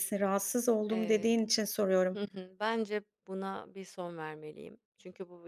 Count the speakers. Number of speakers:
2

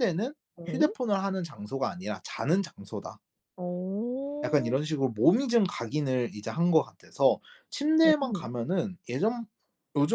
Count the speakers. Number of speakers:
2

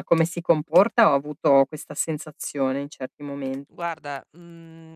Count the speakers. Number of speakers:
2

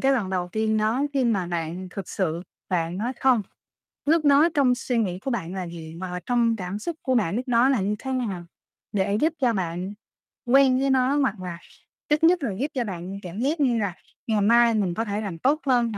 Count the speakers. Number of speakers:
1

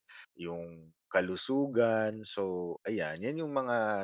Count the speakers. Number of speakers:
1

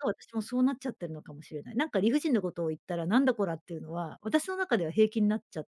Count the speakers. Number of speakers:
1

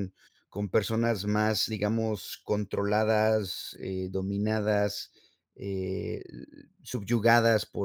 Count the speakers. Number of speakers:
1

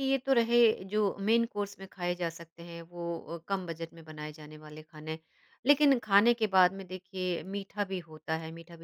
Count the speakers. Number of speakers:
1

